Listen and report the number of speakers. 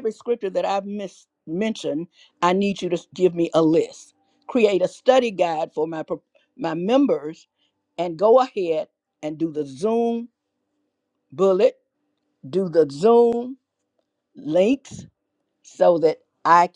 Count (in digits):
1